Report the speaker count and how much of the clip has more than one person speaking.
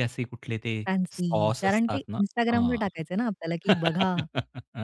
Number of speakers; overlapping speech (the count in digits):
2, about 35%